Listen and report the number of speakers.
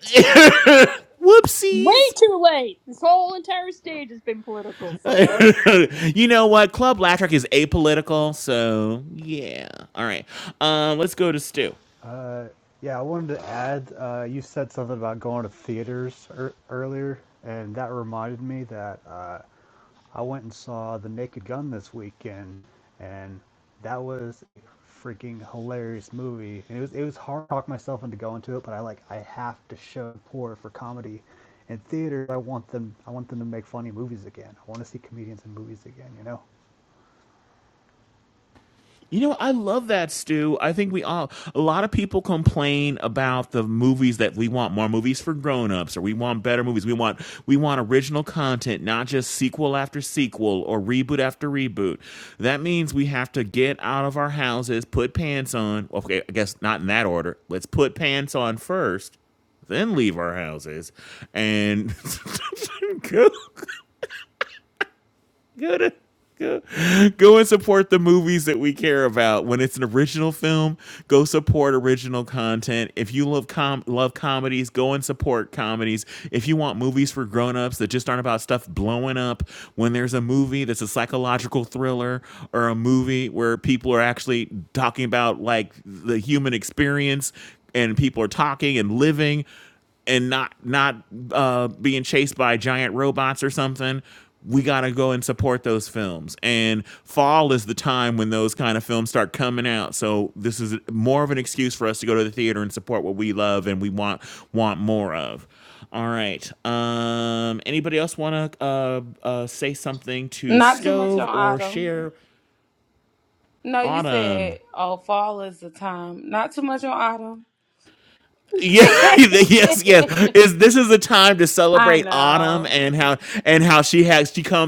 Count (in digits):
4